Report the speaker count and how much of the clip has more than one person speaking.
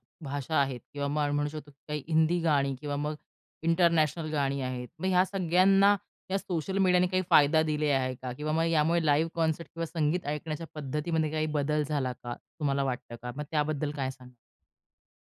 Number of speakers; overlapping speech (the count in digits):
1, no overlap